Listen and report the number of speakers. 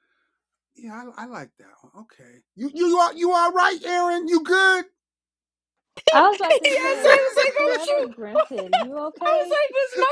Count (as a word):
three